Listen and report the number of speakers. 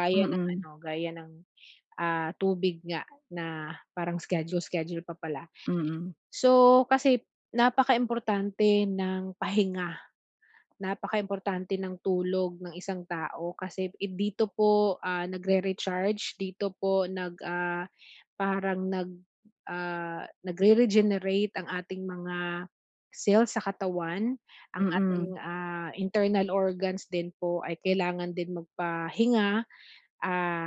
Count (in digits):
2